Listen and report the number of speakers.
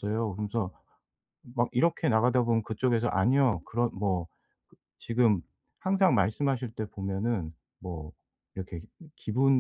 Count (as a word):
one